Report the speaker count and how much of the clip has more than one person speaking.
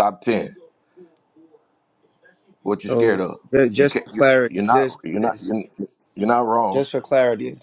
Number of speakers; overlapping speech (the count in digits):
2, about 29%